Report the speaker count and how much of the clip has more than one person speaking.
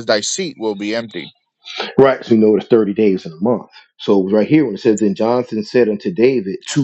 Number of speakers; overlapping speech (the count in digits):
2, no overlap